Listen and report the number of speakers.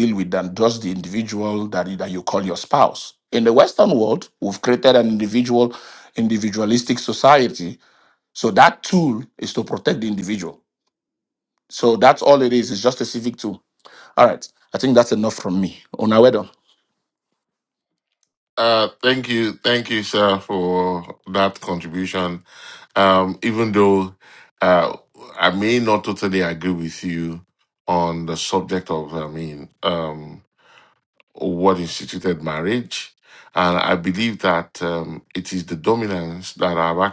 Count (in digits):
2